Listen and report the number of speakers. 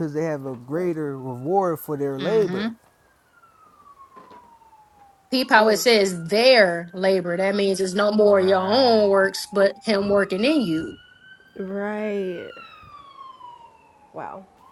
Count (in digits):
3